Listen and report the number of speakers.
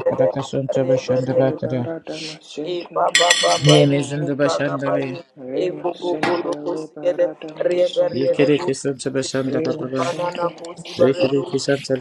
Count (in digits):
3